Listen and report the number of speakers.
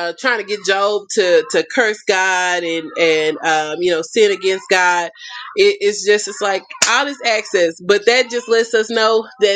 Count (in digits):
1